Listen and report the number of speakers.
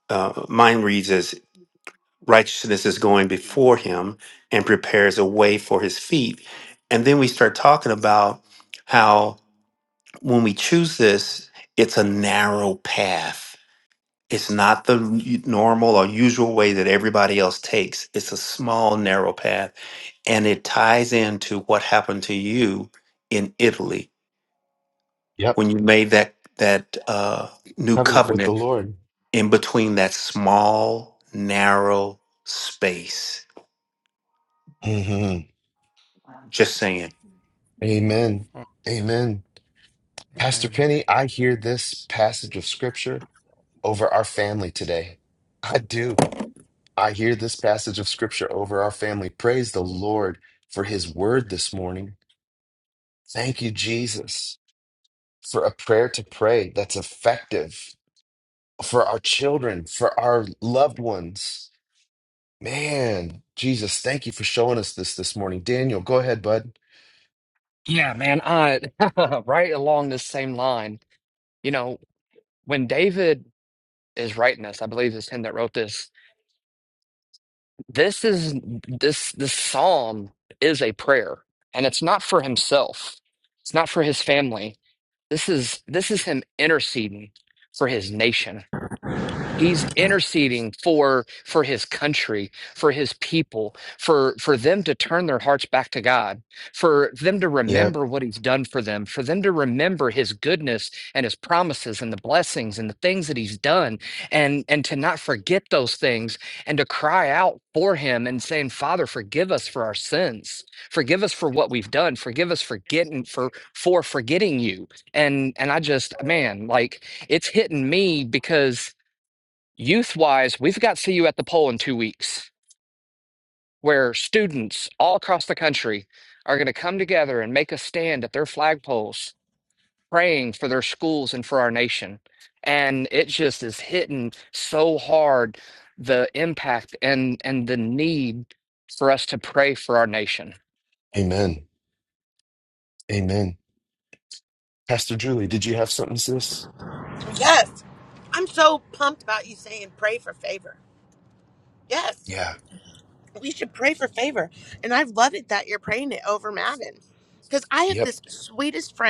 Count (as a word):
four